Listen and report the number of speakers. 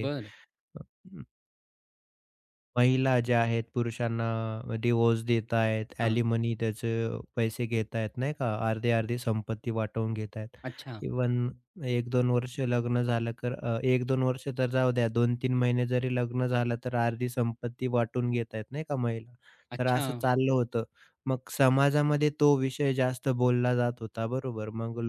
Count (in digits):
2